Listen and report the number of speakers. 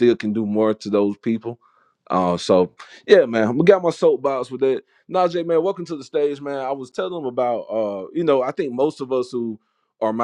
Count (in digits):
1